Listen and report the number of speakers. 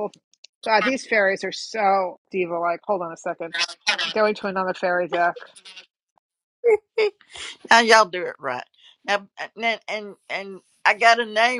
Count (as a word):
two